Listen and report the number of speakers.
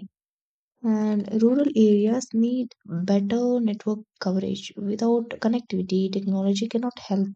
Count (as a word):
one